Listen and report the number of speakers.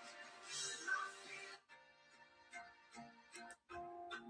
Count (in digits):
0